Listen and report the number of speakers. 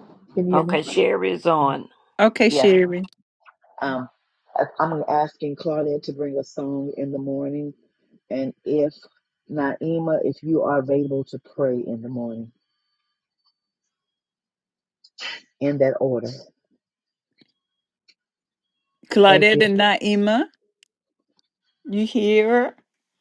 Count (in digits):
3